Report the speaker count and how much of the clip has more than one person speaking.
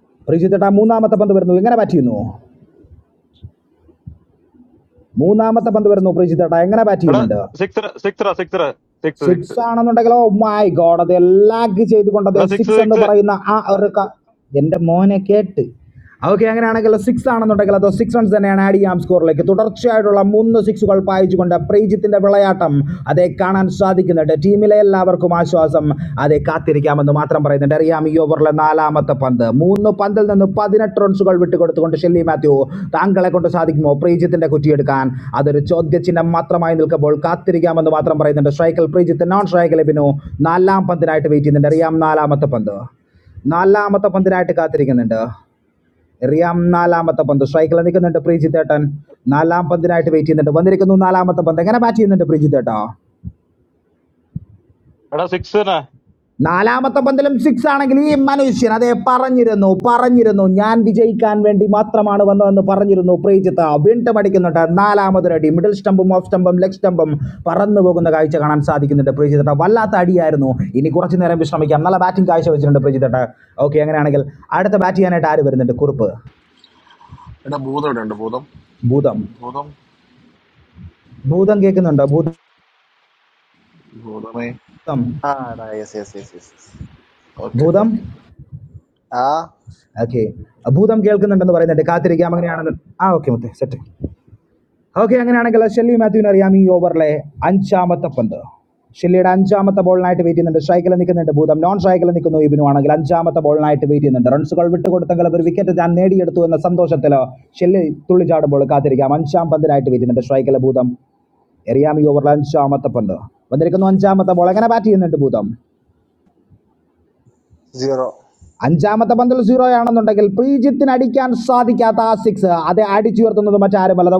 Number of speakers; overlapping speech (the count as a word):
four, about 1%